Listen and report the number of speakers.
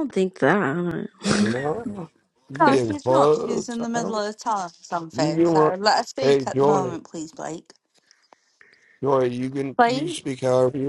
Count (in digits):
3